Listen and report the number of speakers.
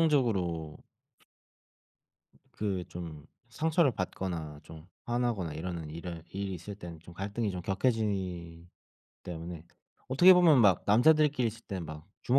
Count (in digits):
1